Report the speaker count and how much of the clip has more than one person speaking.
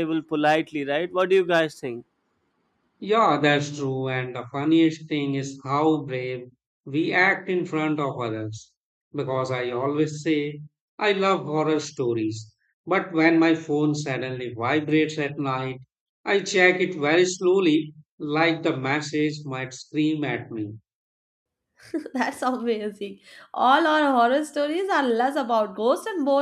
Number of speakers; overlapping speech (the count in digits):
3, no overlap